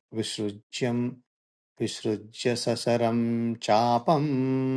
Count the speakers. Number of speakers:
1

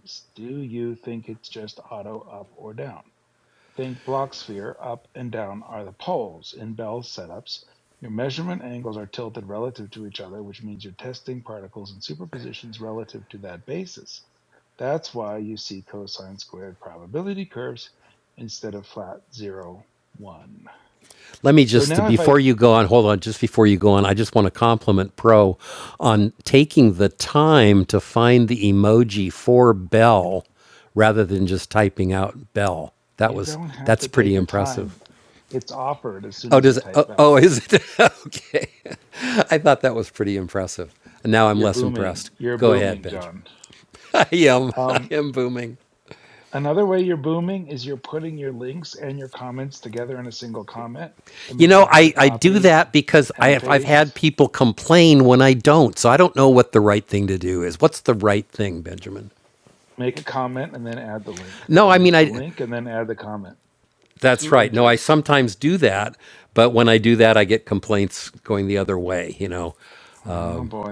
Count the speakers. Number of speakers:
2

